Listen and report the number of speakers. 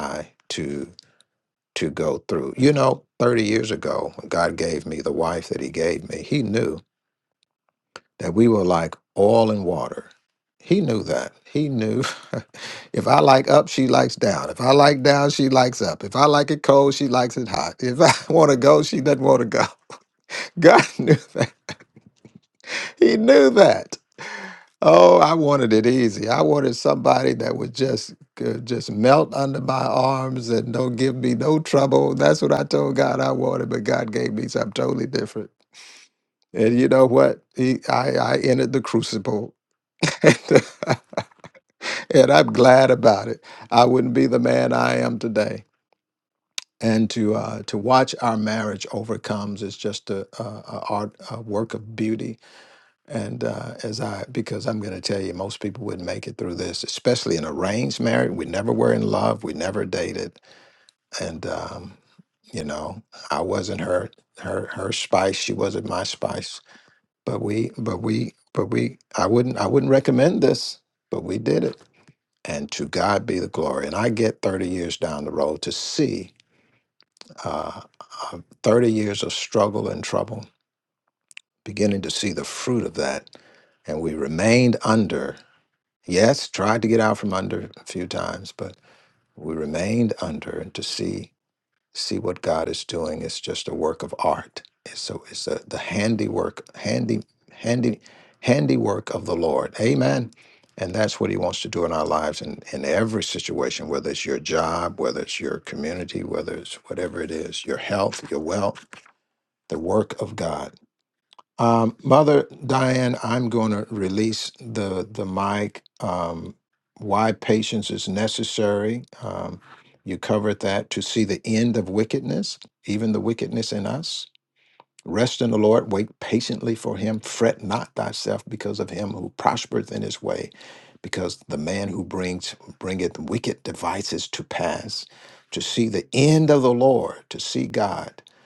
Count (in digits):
1